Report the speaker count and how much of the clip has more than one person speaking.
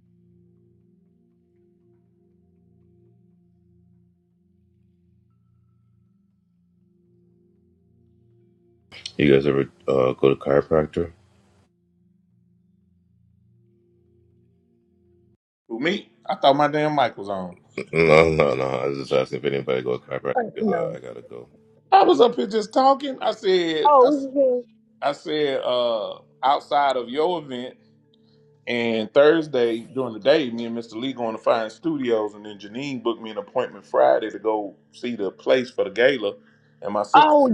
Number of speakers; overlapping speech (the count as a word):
three, about 3%